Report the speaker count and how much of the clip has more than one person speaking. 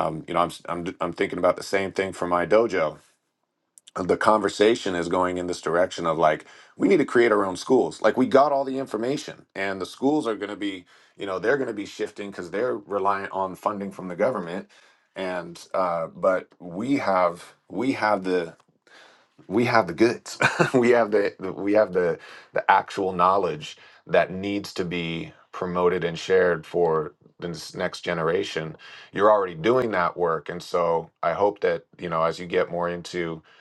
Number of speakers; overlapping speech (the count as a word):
one, no overlap